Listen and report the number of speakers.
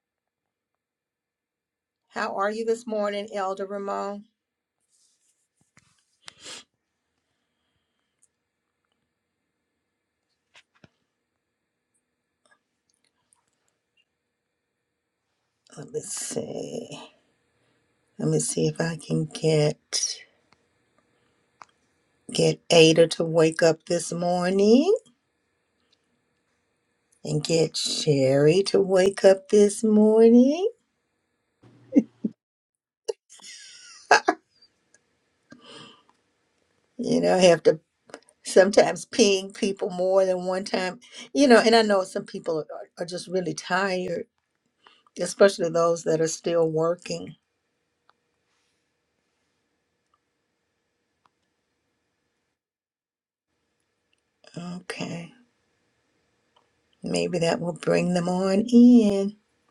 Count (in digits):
1